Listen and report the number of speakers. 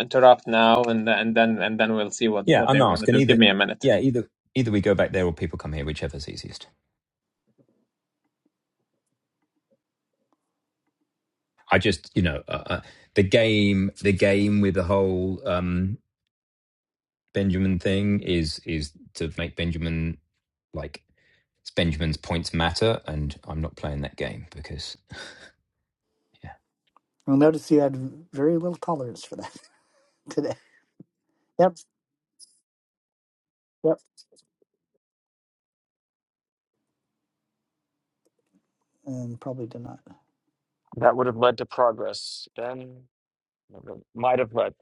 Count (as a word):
four